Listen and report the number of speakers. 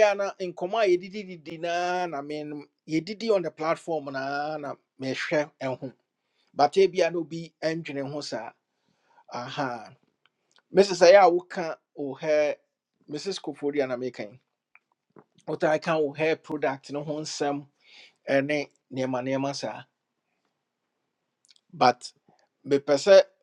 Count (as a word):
one